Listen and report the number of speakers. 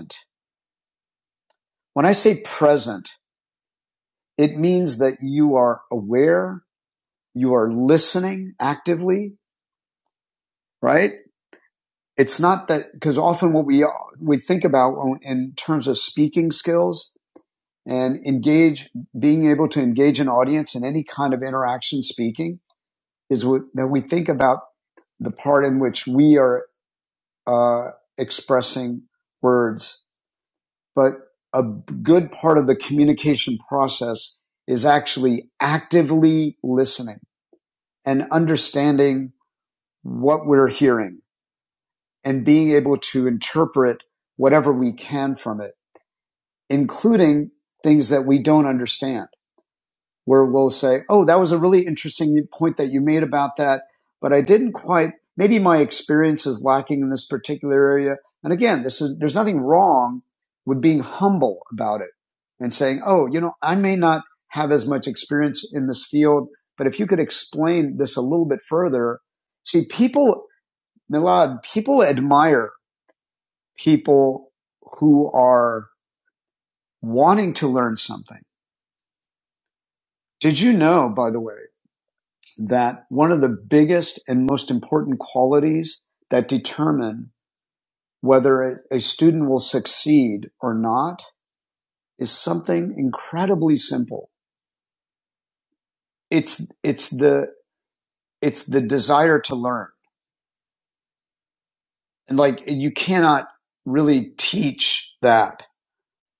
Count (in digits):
1